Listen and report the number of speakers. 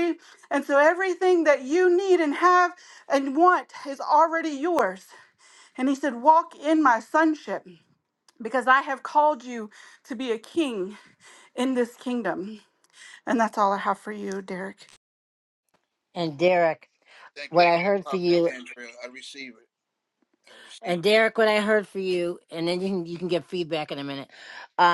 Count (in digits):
3